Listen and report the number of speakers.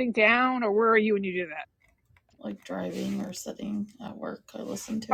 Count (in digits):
2